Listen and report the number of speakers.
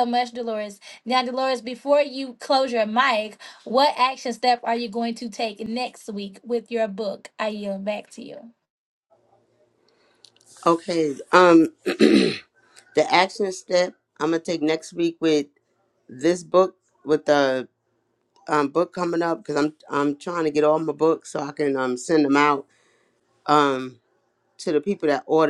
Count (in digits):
2